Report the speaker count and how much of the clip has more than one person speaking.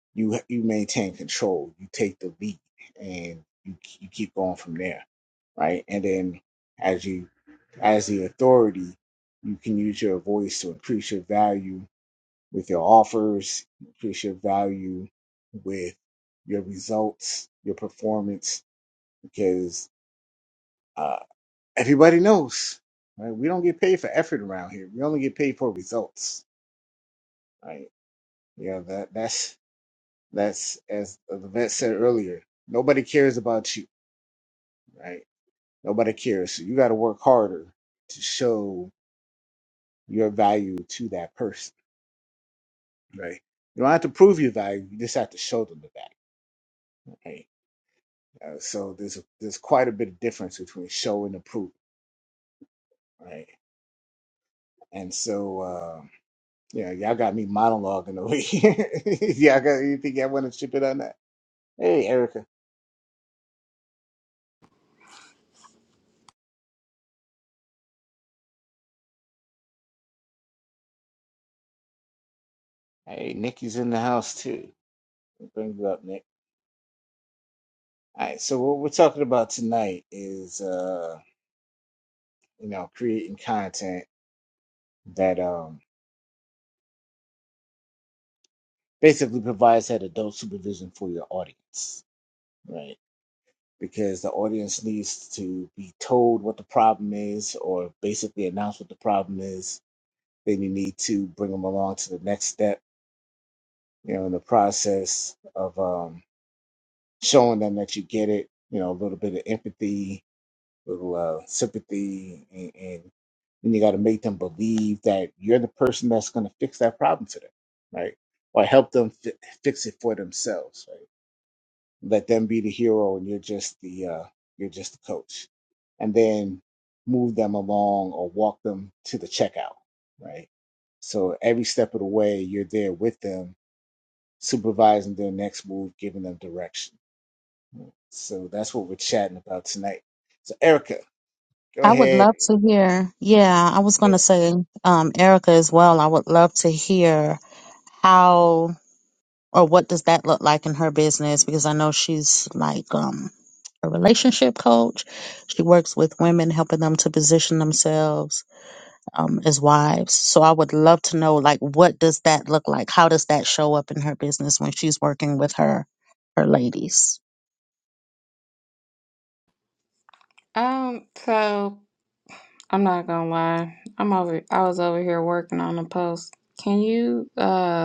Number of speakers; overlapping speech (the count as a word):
three, under 1%